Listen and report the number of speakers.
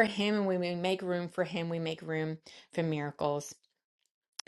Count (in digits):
1